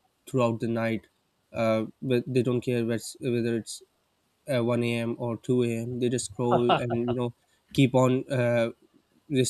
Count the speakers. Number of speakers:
one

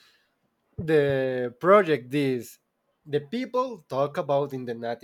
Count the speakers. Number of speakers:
one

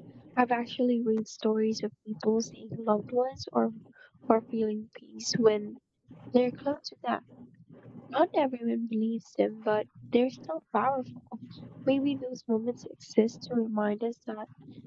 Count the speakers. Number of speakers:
one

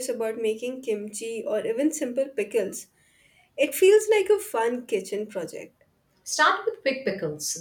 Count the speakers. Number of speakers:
two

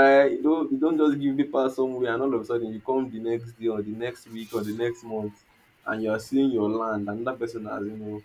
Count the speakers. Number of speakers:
one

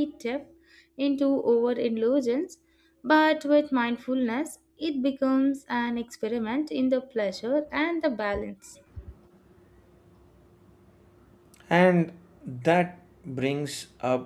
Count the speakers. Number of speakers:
two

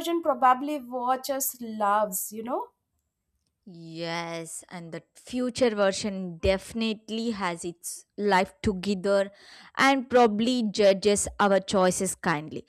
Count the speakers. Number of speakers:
two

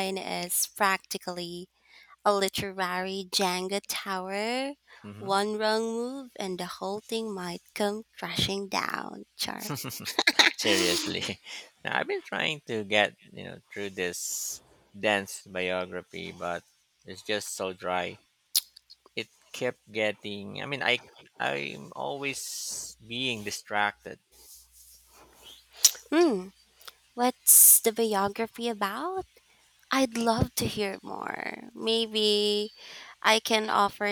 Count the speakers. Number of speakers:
two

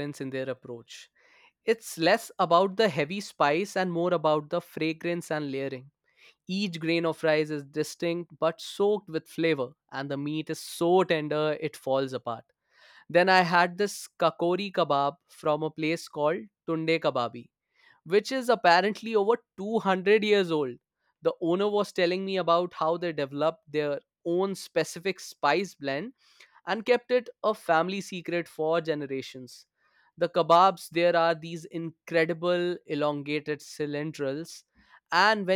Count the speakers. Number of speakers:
one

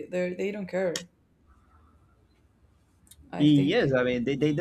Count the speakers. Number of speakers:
two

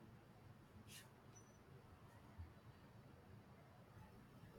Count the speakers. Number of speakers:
zero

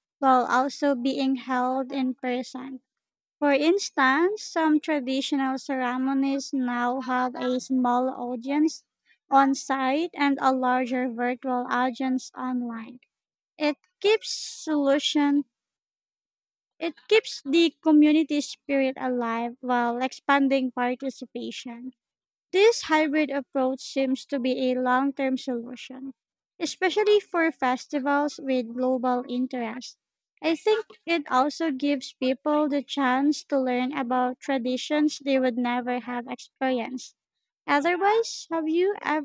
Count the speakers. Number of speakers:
one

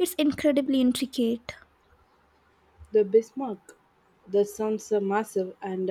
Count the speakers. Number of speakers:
two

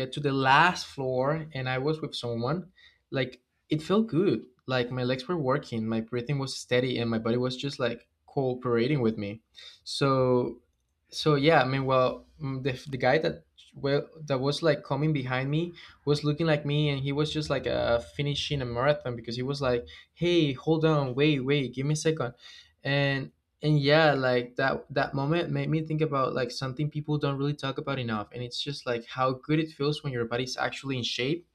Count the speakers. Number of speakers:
one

